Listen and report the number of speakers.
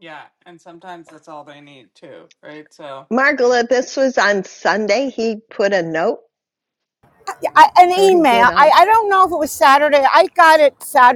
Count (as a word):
three